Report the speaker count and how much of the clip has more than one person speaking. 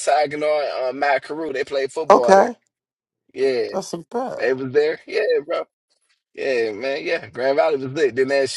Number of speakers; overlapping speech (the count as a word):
two, about 7%